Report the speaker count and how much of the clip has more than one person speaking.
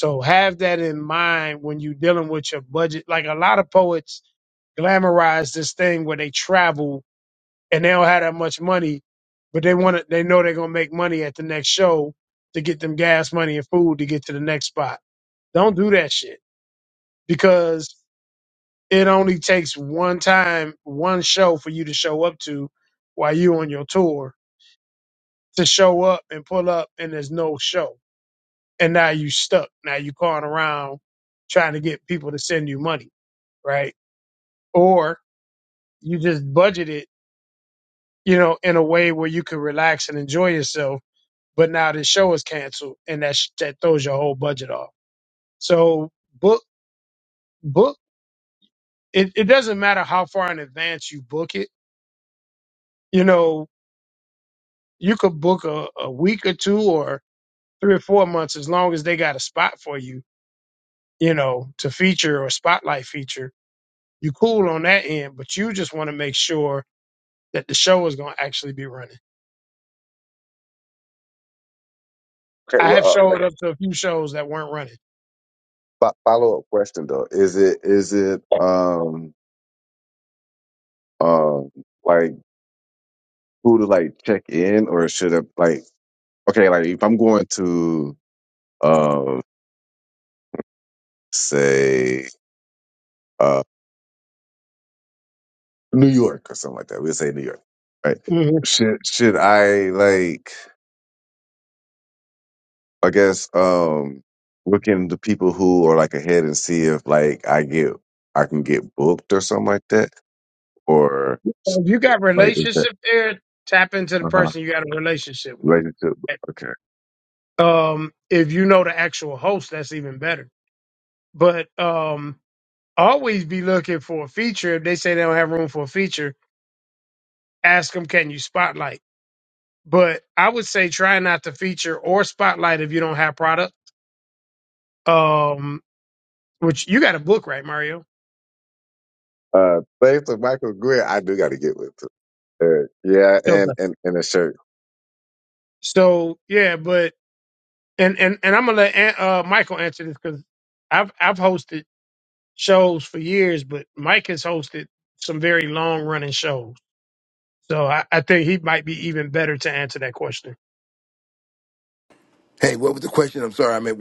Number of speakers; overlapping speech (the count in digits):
3, about 1%